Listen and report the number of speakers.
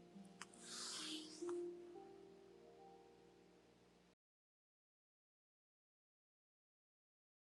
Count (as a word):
zero